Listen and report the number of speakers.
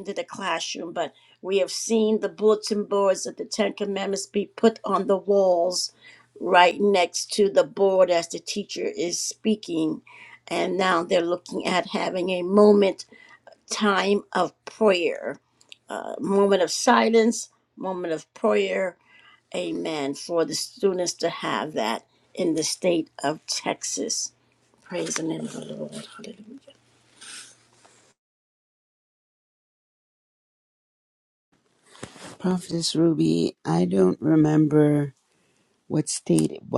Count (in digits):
2